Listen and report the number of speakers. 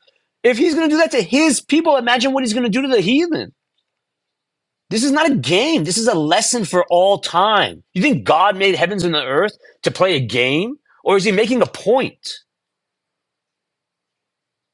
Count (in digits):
1